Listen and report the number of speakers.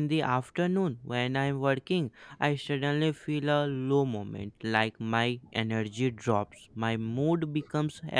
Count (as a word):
one